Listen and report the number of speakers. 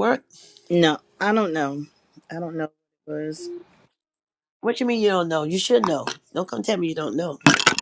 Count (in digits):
2